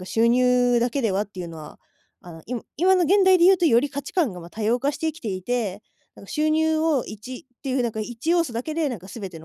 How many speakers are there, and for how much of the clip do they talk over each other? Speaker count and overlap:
one, no overlap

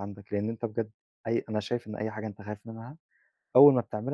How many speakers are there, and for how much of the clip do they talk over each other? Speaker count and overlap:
one, no overlap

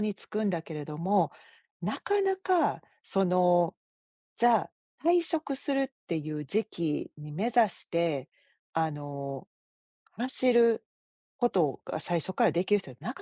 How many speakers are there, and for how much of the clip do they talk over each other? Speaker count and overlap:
one, no overlap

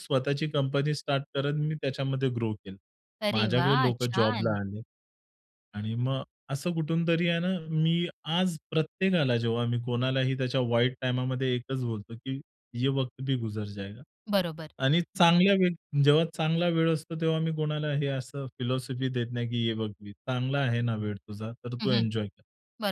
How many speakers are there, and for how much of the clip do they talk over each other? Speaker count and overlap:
two, about 7%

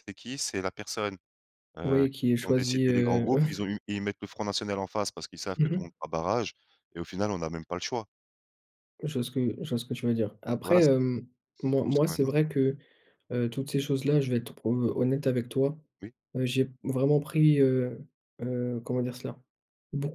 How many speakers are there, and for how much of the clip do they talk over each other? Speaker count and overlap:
two, about 10%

